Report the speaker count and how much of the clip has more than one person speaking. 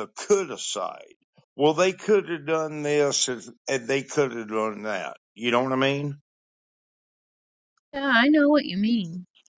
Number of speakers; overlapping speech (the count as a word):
two, no overlap